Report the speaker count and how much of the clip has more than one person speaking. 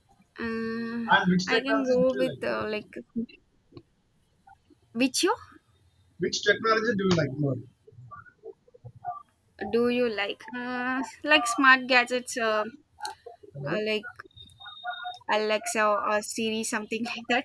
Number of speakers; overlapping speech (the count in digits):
2, about 8%